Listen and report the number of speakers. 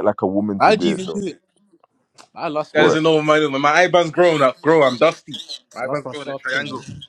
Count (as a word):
three